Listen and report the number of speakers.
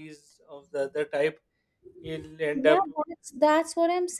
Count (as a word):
two